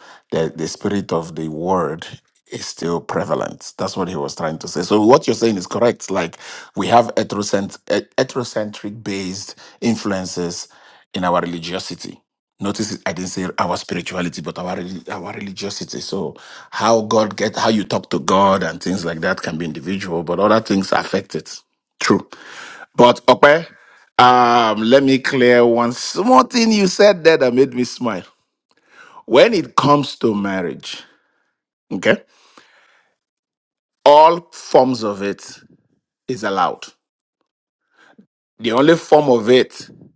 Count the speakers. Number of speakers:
1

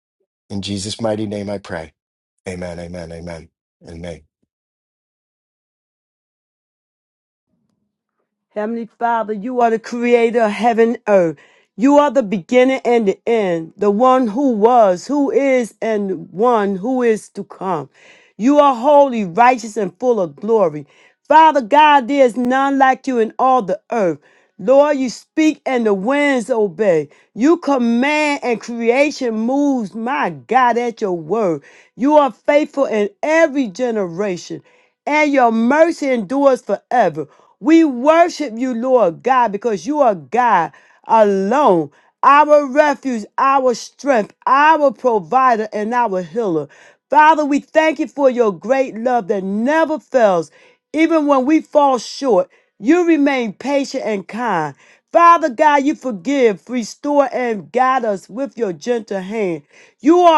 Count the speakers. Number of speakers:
2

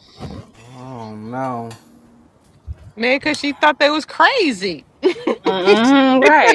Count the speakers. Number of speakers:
3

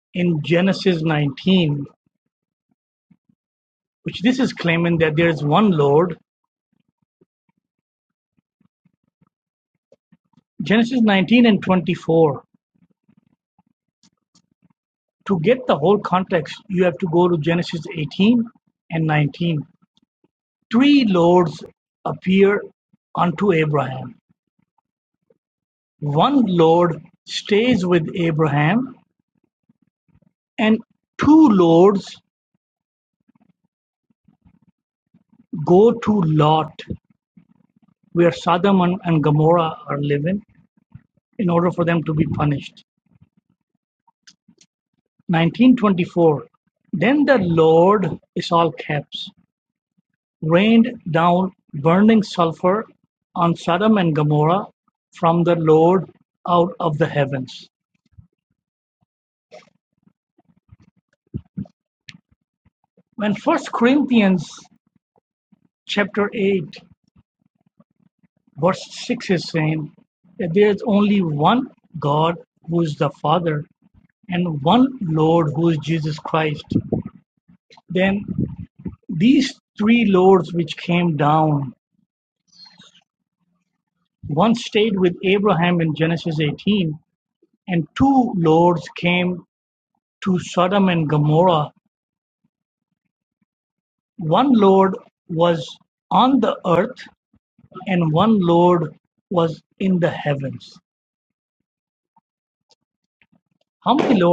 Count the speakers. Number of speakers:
1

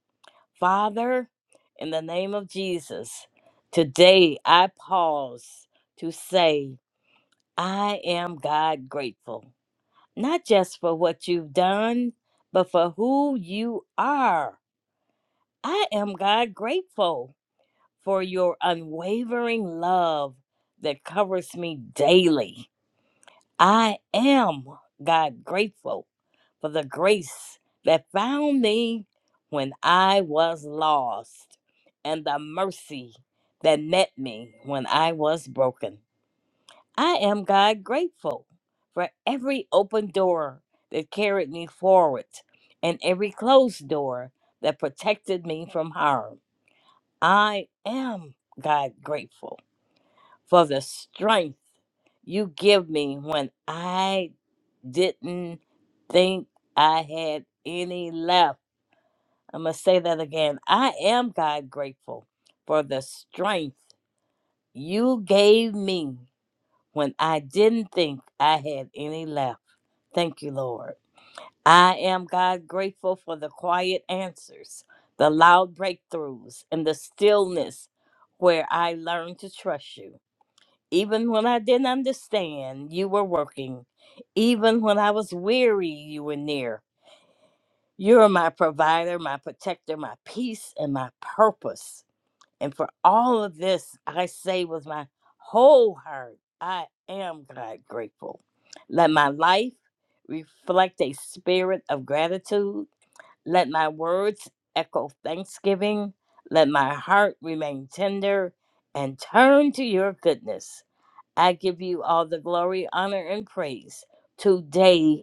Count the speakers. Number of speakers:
1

